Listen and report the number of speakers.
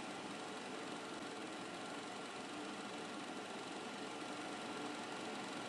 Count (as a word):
zero